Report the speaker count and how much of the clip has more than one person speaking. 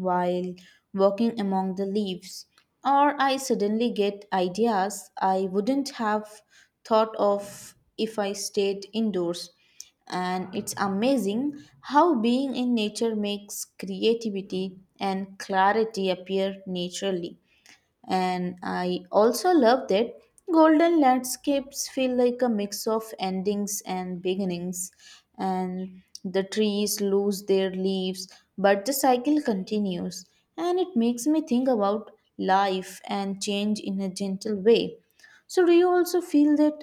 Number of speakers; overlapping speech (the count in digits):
1, no overlap